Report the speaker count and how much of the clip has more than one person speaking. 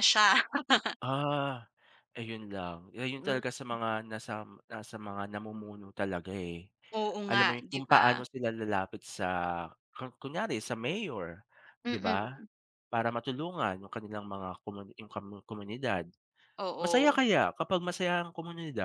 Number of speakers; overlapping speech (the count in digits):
2, about 11%